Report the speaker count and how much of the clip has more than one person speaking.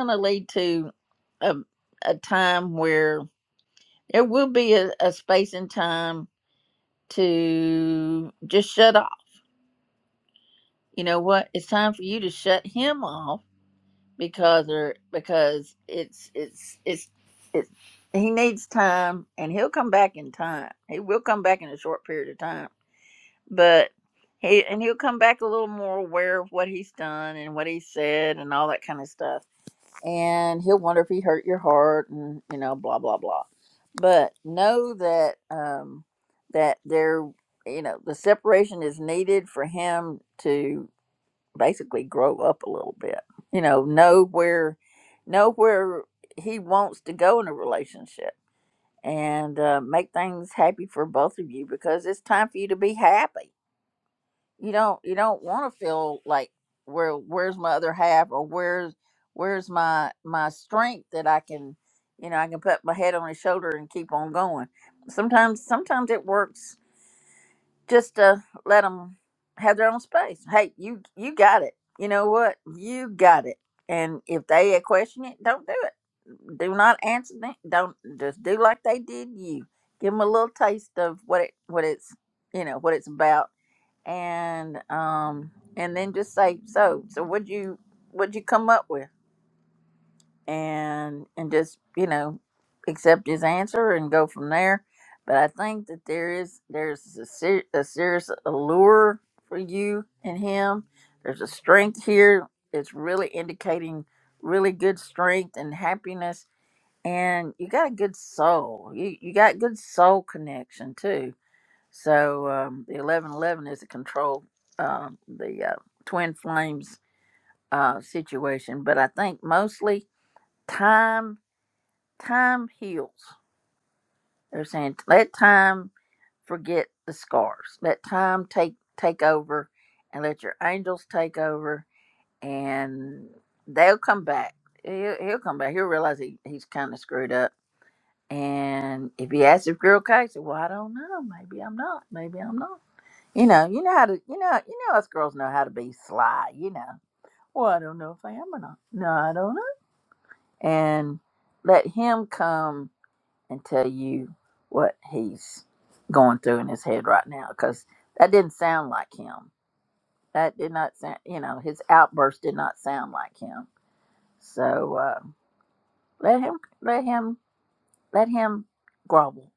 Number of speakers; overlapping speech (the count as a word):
one, no overlap